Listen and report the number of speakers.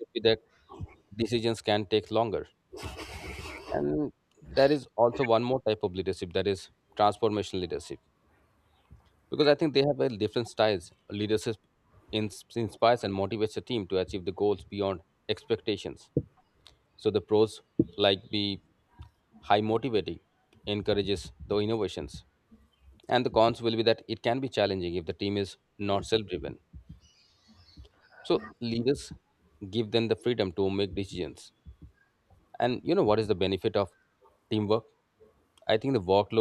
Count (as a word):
one